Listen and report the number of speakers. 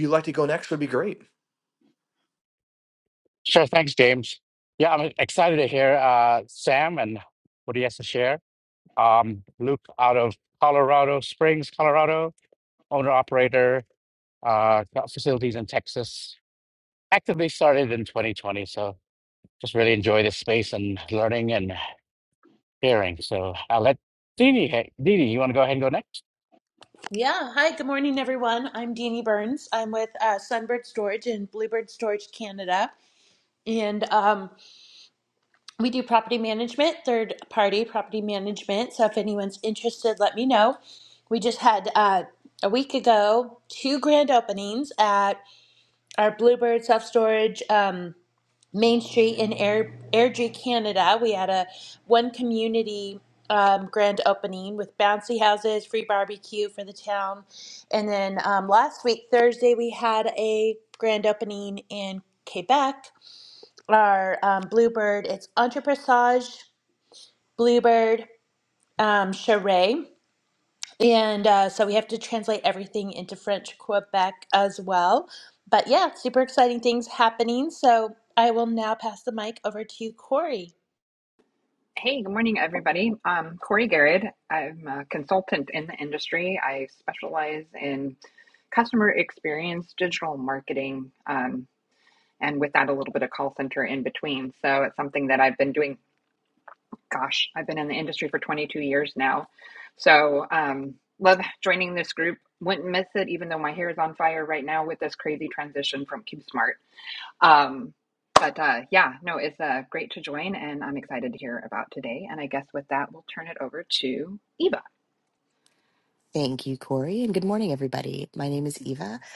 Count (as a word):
five